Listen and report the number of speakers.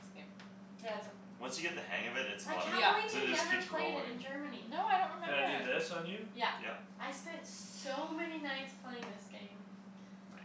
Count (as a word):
four